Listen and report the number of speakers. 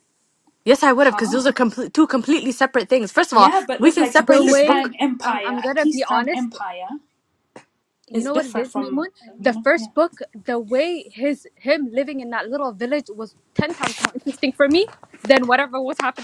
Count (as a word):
three